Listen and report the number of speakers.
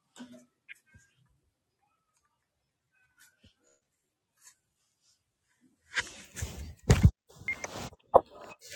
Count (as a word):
zero